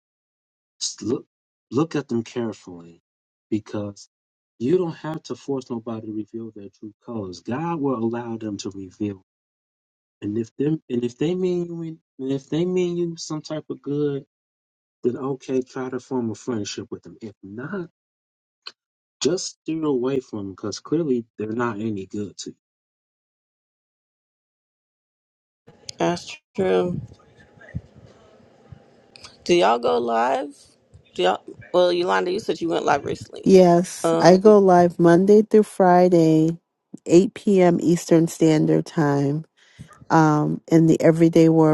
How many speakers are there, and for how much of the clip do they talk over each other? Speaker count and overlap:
three, about 1%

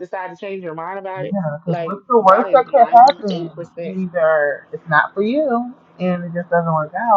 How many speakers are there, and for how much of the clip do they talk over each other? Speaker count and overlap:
two, about 25%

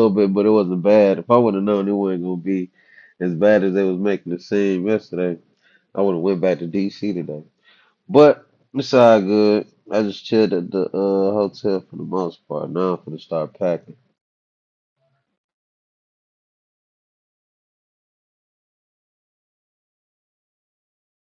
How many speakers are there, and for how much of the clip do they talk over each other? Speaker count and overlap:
one, no overlap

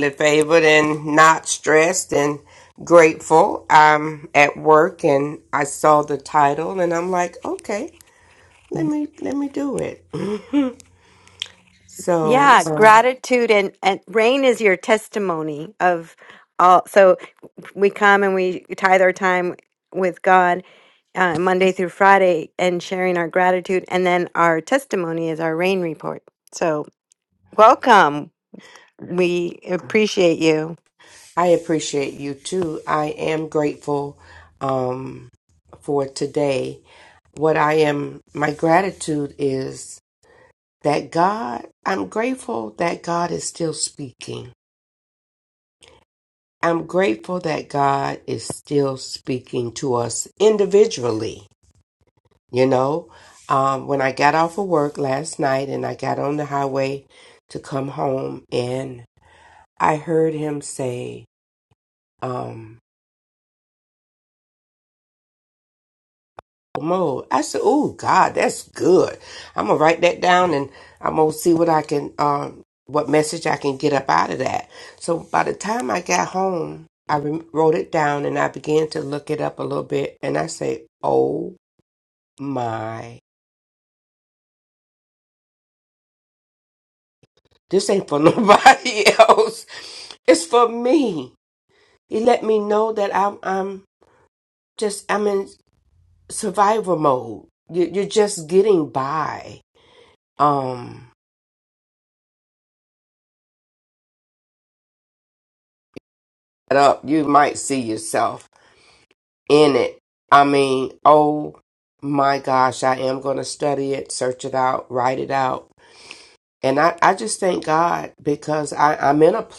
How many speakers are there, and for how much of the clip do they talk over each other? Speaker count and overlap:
two, under 1%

